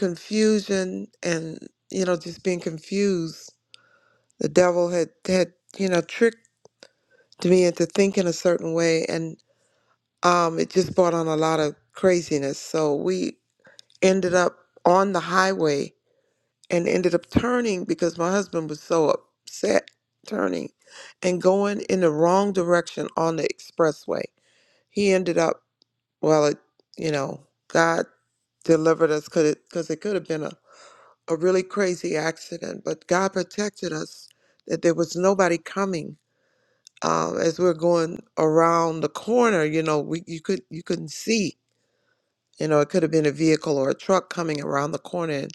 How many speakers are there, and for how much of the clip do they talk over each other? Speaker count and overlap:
1, no overlap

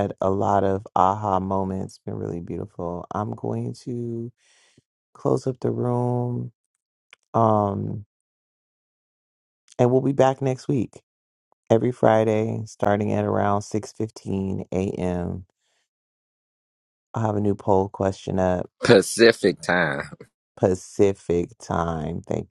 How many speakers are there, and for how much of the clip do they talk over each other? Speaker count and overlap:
2, no overlap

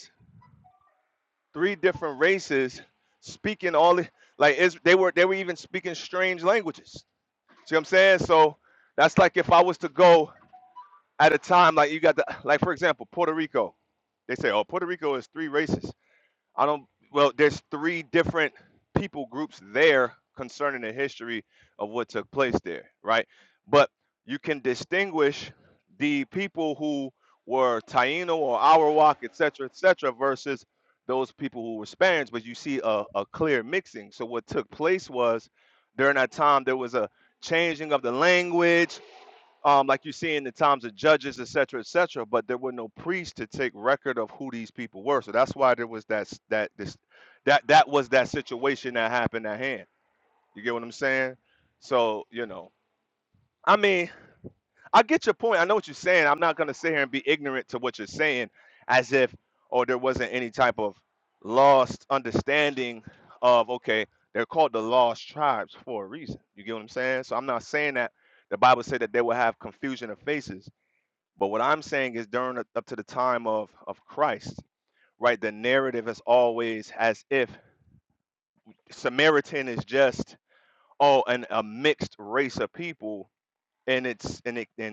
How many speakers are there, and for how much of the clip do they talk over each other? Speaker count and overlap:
1, no overlap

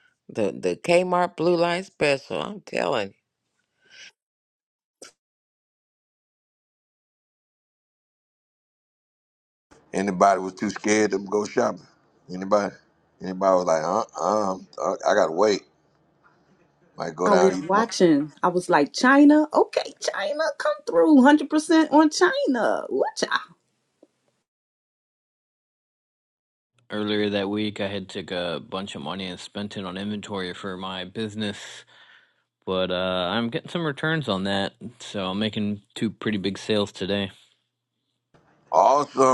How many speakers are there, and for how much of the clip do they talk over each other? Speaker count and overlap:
4, about 2%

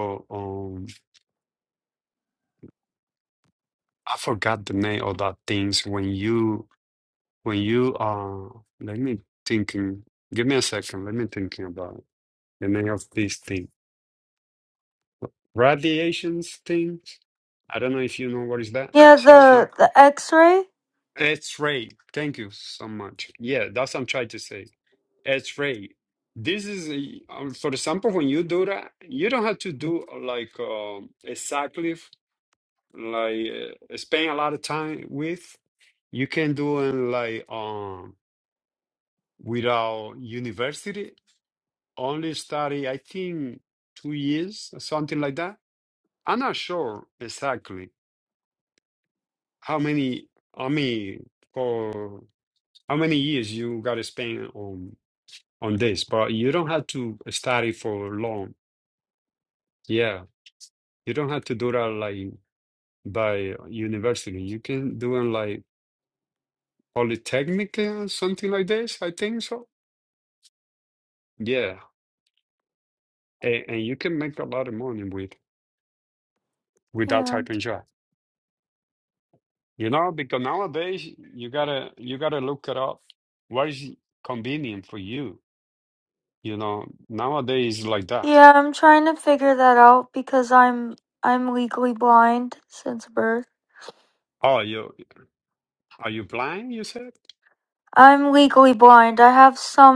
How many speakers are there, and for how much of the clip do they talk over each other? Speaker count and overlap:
2, about 1%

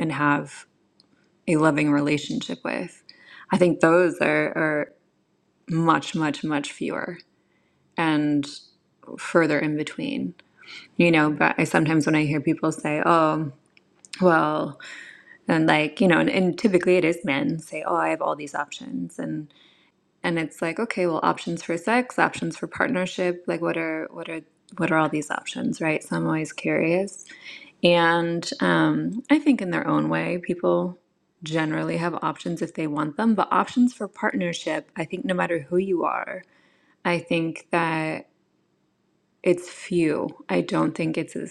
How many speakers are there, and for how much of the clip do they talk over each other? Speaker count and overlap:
1, no overlap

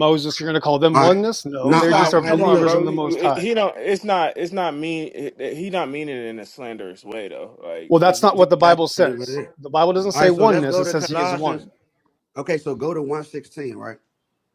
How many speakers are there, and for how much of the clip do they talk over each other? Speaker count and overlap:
3, about 31%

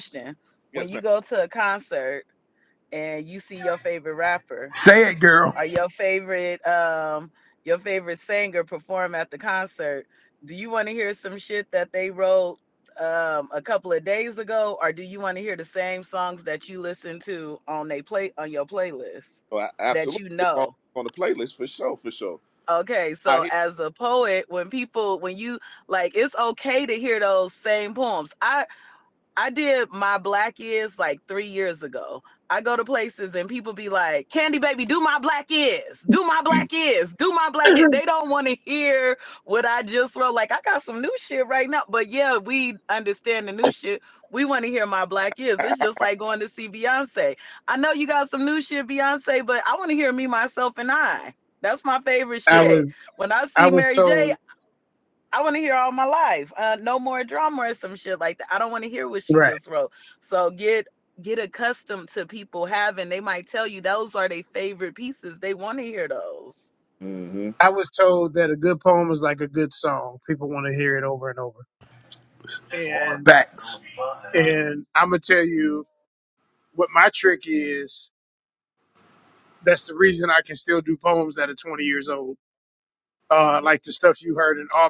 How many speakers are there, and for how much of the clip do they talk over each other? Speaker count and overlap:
4, about 3%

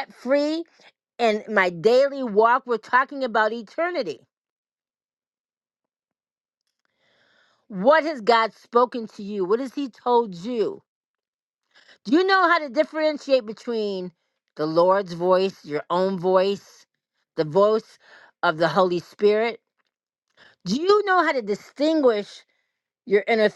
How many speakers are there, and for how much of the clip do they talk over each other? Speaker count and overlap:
1, no overlap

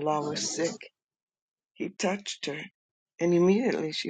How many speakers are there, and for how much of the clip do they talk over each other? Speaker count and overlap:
1, no overlap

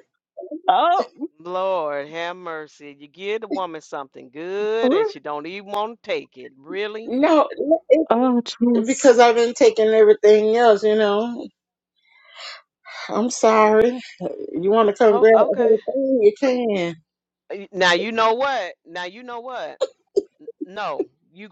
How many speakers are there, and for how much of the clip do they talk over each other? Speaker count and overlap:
3, about 6%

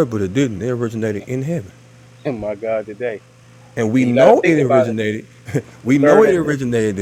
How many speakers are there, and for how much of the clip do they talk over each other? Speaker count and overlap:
2, about 21%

